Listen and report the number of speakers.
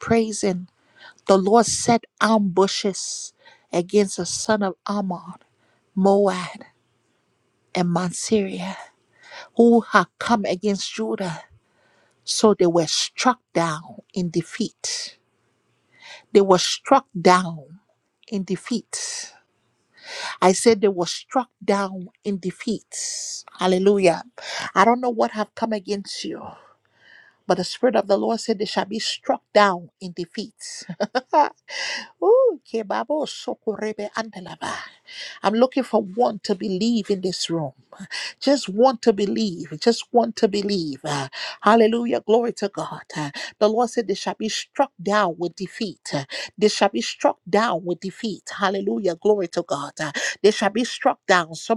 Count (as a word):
one